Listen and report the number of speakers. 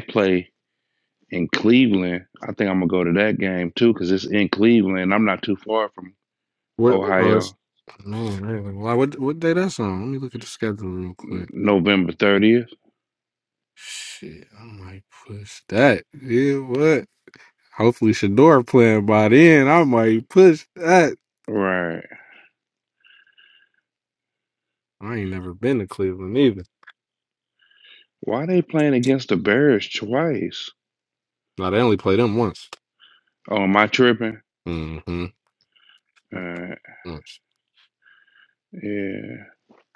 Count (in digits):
2